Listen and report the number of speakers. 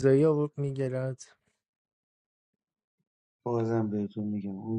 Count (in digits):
2